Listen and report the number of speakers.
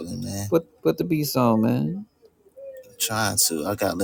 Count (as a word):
two